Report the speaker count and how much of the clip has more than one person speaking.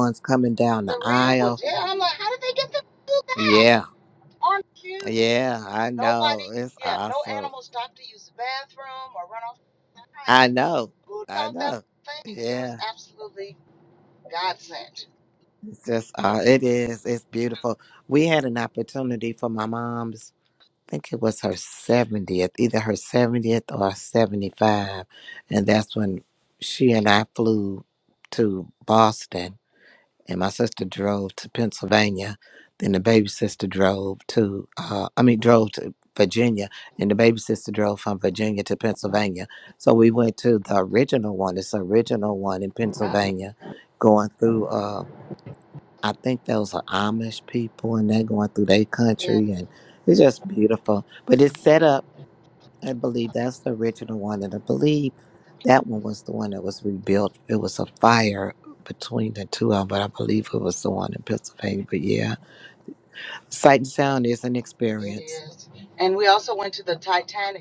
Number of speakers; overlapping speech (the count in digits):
2, about 6%